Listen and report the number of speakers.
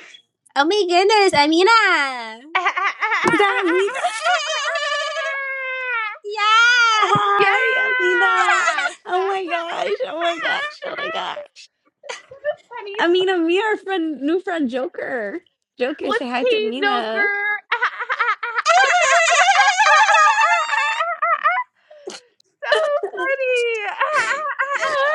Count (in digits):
3